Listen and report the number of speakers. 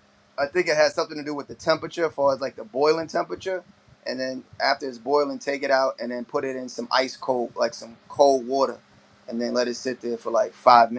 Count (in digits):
1